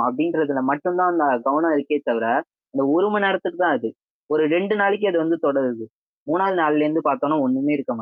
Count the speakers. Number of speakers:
1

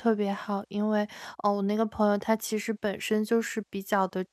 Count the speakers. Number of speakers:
1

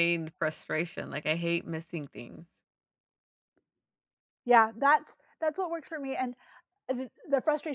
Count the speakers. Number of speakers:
2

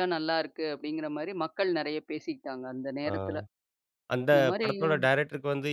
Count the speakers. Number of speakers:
2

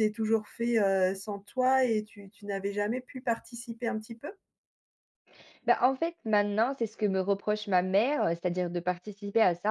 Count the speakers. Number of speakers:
2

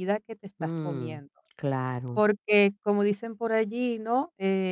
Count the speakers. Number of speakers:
2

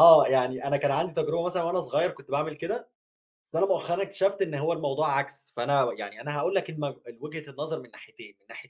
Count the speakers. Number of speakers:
1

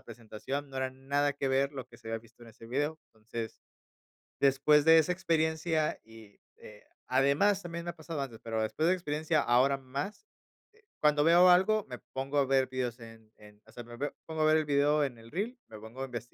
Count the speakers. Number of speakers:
1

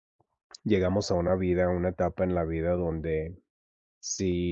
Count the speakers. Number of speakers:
1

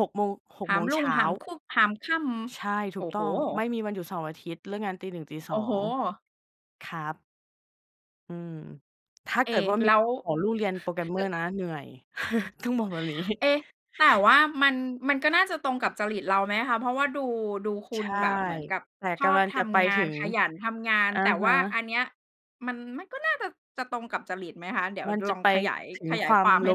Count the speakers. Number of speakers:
2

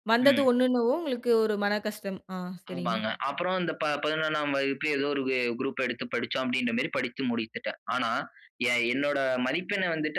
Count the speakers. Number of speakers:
2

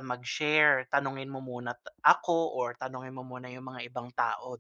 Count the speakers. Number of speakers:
1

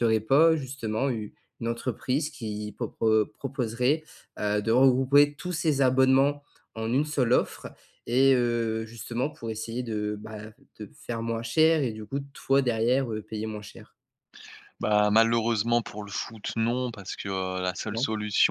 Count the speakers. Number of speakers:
2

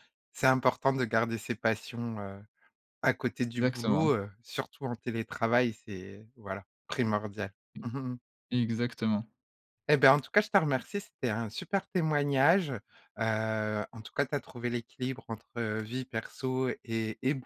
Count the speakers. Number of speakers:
2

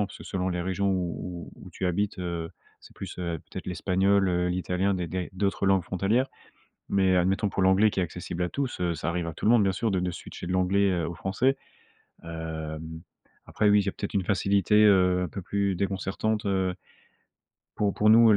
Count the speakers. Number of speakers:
1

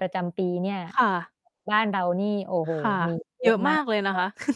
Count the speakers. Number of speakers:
2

